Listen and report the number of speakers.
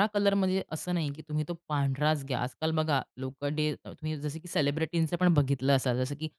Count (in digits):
1